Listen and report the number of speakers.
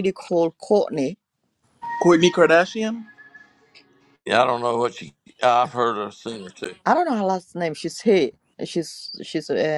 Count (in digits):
3